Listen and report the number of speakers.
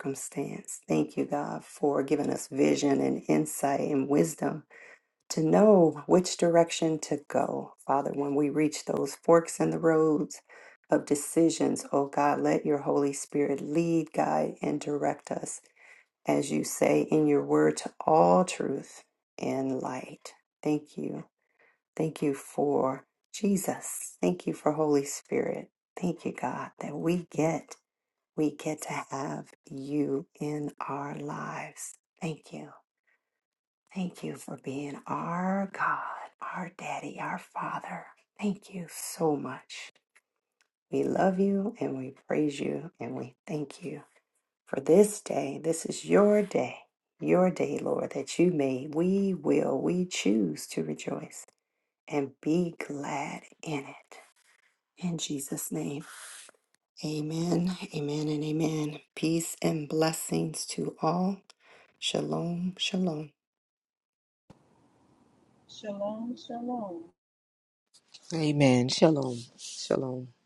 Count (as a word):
three